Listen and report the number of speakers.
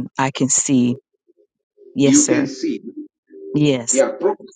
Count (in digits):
2